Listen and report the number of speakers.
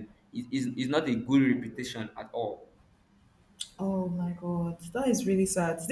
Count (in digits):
2